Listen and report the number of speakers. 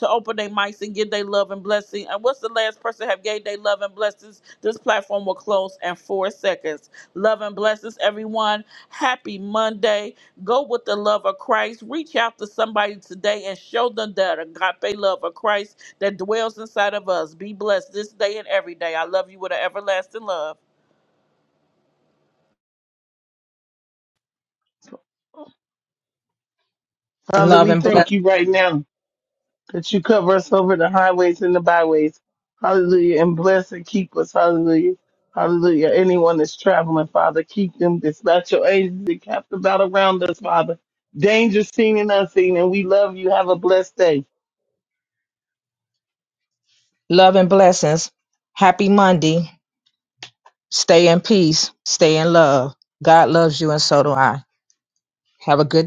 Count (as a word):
three